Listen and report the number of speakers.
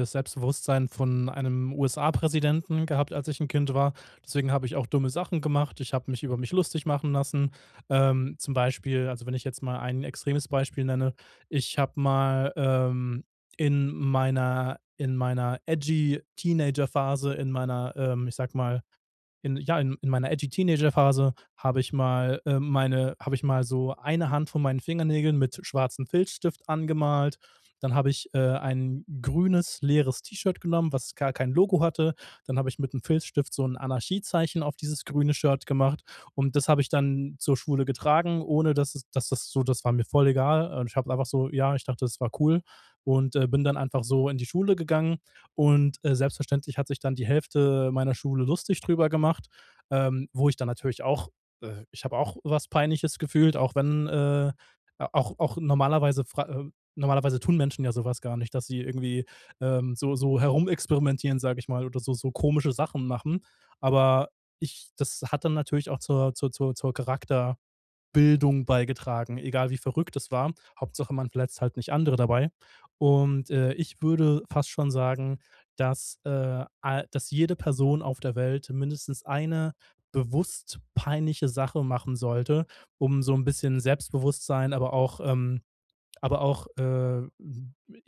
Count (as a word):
one